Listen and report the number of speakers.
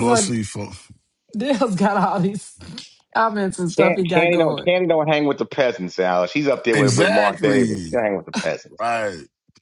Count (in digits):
3